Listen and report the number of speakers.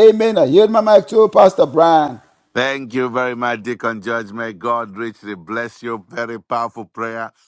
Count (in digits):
2